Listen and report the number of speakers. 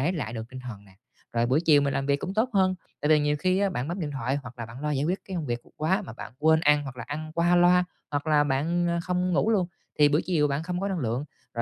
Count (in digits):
1